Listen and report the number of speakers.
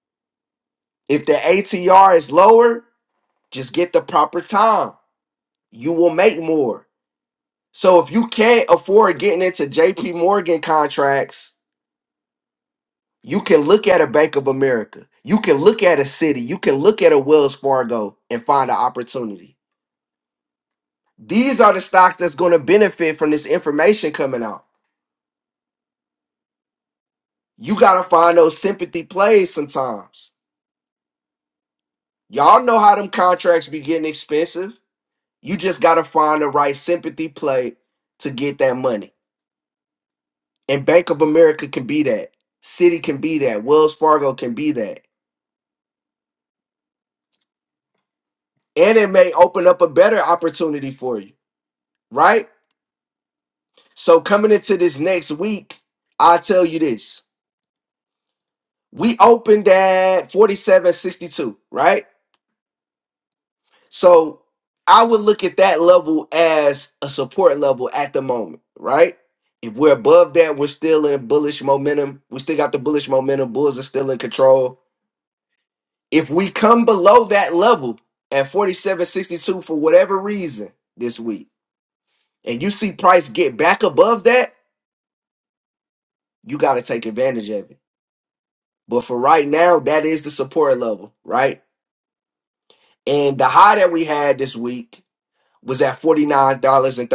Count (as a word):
one